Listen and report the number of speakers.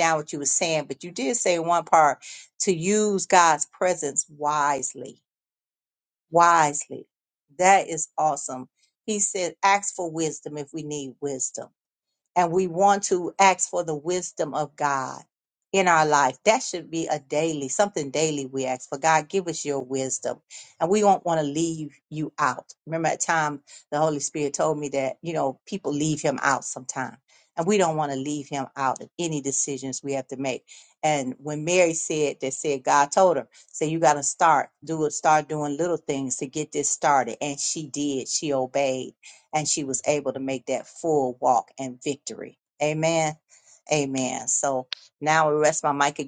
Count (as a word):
one